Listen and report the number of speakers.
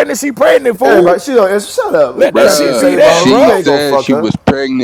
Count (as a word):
three